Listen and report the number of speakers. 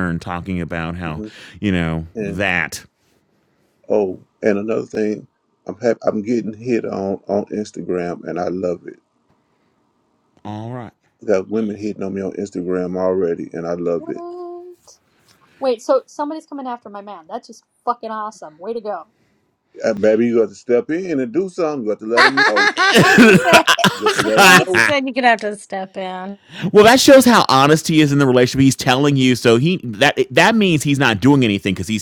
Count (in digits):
4